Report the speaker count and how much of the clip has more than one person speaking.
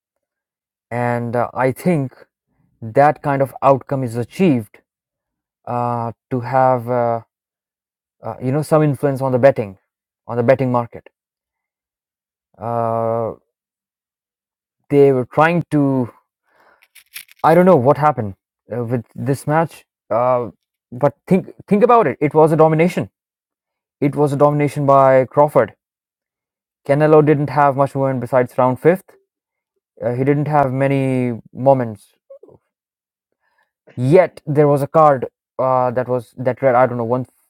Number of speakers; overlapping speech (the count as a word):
one, no overlap